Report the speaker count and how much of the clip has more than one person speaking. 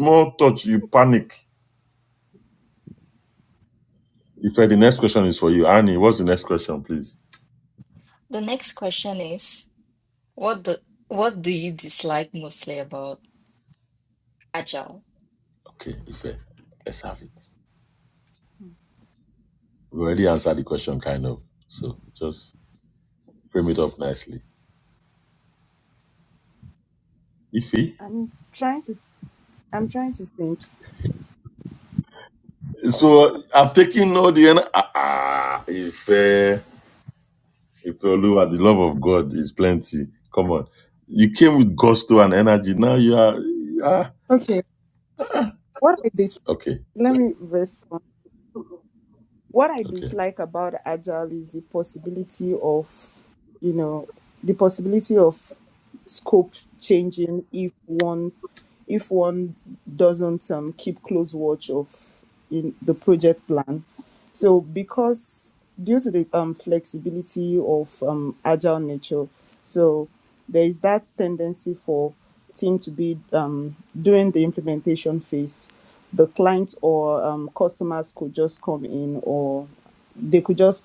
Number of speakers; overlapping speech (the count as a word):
three, about 1%